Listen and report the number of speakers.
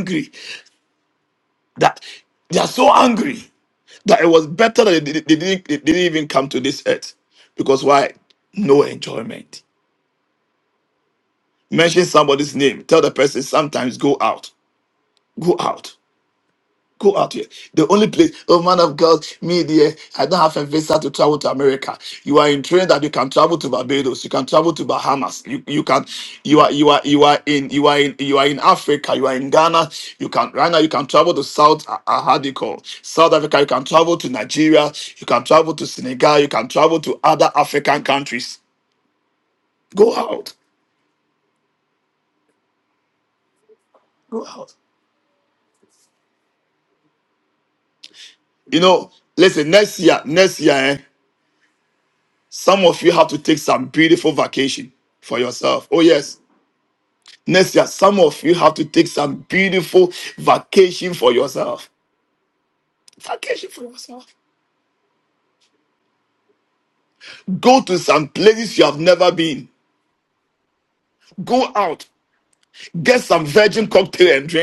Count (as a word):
one